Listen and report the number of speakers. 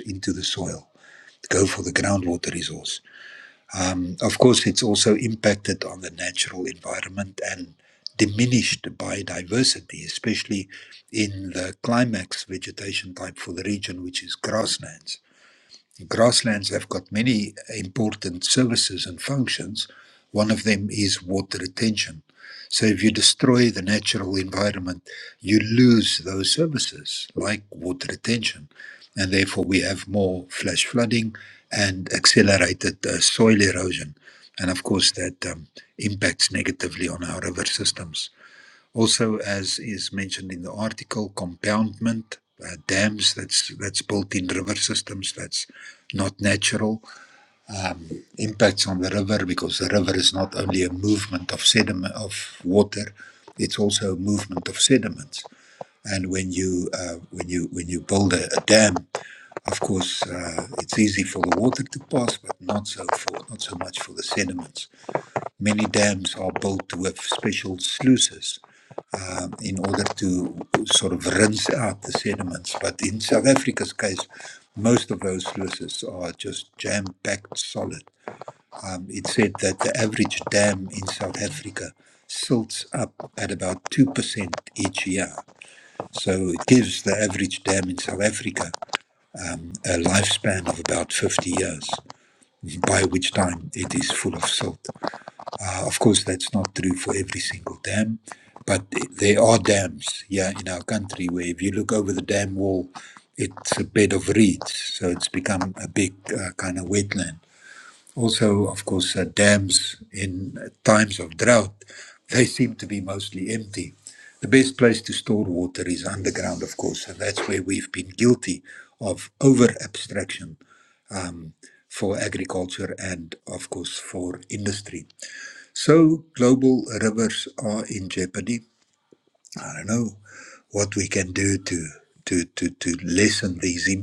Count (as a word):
one